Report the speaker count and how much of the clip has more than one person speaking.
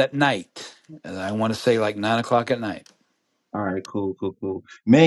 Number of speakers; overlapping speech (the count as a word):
two, about 1%